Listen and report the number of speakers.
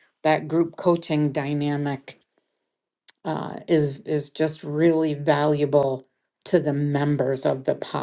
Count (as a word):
one